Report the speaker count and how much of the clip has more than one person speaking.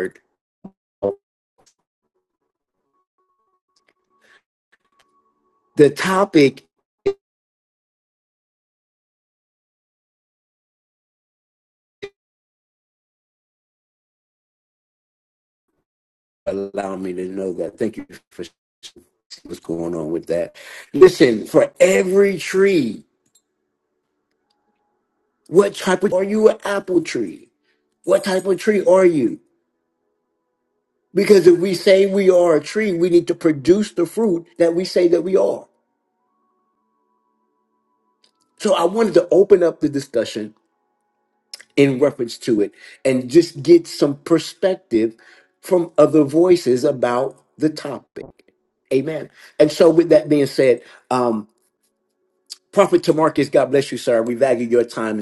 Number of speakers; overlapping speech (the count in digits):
1, no overlap